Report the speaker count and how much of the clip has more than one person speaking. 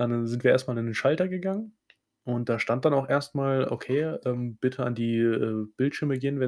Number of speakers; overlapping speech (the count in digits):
1, no overlap